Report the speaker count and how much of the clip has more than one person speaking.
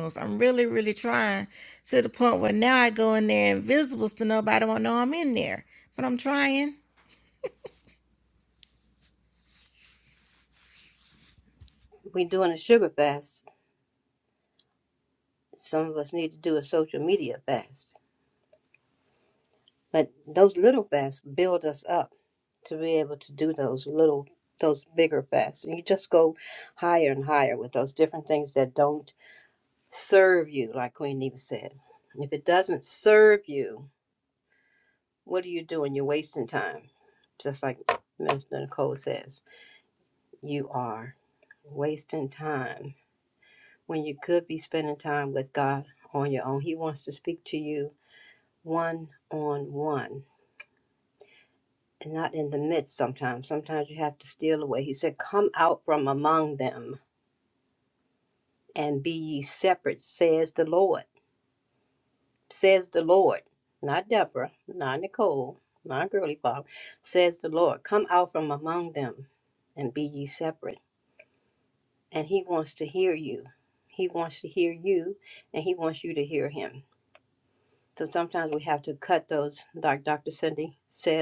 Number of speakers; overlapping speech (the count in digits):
2, no overlap